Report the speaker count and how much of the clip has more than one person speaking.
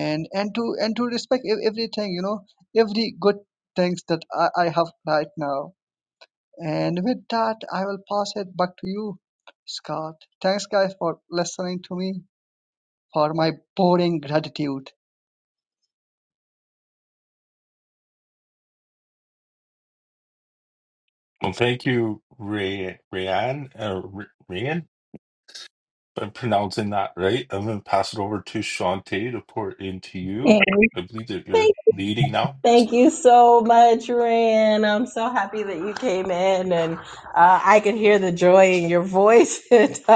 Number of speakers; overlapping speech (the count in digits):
3, under 1%